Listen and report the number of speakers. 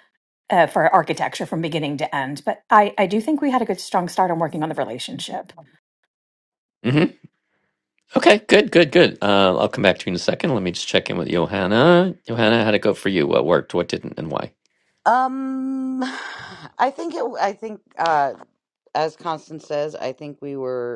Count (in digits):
3